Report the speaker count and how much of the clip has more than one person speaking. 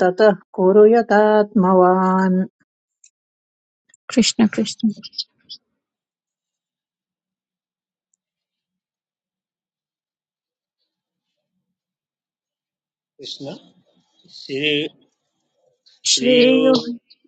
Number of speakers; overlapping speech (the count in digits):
3, about 3%